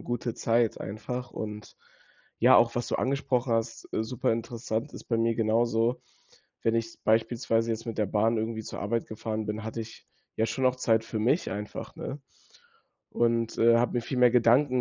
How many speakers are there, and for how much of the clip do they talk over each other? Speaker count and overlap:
1, no overlap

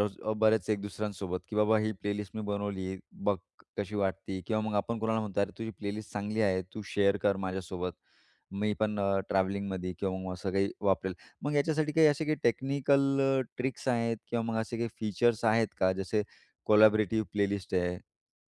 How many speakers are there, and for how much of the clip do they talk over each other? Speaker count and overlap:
1, no overlap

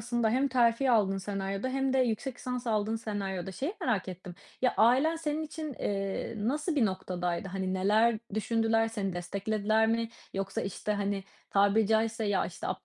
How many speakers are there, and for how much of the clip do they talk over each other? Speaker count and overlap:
1, no overlap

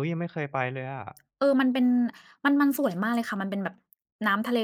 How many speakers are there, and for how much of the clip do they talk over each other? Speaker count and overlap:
2, no overlap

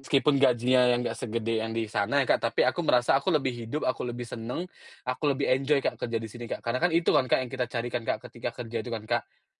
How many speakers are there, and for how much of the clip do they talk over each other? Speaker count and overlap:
1, no overlap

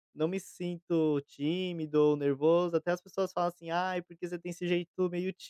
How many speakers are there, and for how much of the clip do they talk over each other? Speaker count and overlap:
1, no overlap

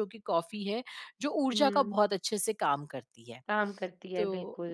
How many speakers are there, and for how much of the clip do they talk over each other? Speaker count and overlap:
2, about 21%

